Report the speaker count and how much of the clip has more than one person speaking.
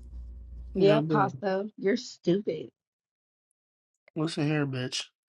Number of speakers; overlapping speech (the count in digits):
2, about 10%